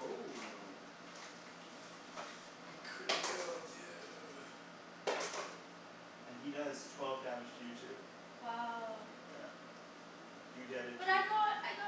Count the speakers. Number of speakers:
3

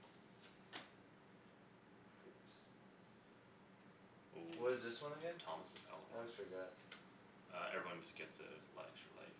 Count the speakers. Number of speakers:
2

